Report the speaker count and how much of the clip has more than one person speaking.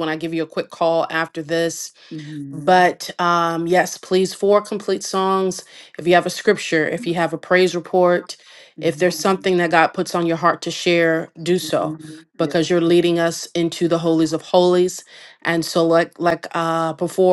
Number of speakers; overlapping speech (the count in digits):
2, about 6%